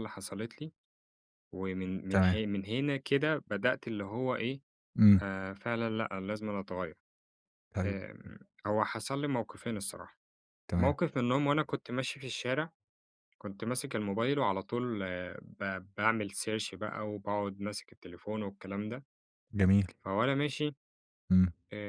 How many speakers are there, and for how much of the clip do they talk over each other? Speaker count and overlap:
2, about 3%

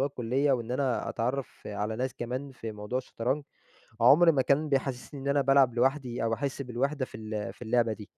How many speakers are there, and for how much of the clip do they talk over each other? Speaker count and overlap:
1, no overlap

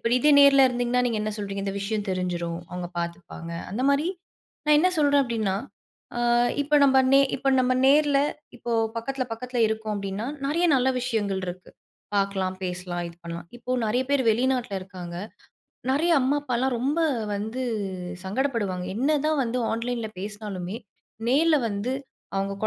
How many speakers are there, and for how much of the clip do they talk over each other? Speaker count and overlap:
1, no overlap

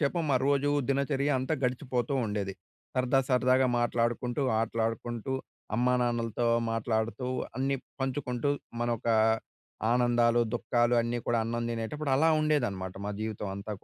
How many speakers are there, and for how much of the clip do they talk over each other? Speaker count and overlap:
1, no overlap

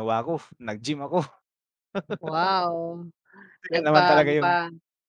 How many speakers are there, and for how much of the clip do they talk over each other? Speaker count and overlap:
2, about 17%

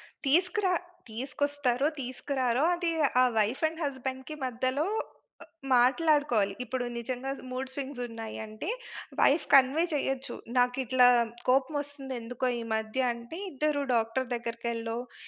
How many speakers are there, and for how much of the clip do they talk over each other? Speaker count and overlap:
1, no overlap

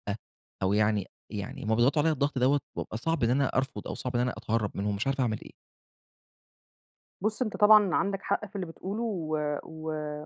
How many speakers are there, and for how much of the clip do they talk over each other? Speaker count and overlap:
2, no overlap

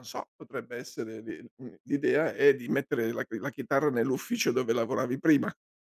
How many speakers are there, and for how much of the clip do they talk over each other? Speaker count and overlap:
1, no overlap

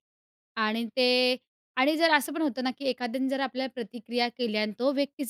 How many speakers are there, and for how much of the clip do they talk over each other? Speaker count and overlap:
1, no overlap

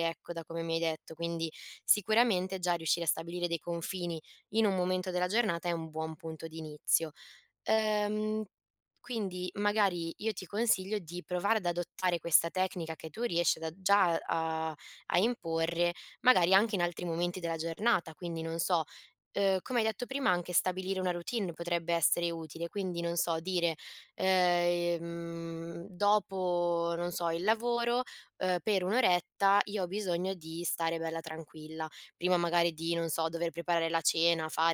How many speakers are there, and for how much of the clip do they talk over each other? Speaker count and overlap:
1, no overlap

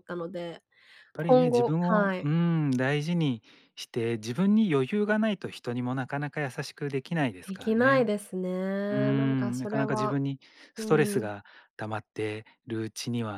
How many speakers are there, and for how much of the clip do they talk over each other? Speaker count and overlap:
2, about 24%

